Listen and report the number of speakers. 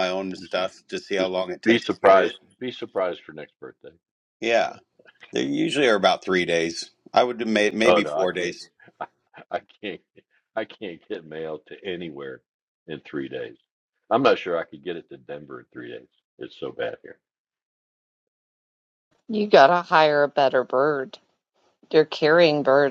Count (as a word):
three